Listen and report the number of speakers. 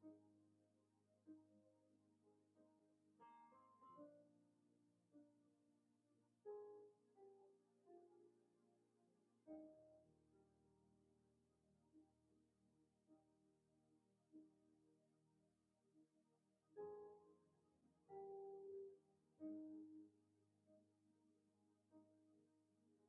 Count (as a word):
zero